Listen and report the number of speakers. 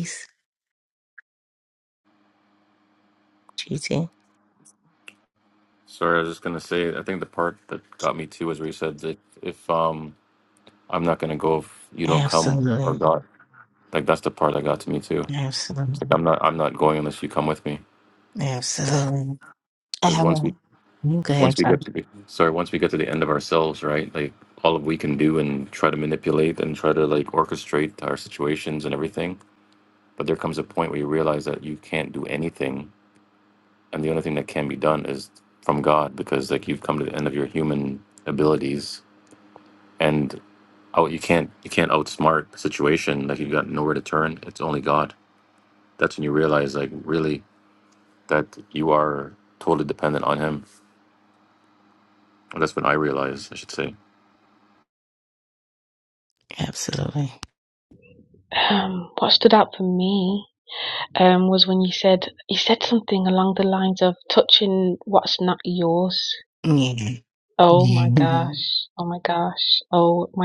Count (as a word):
three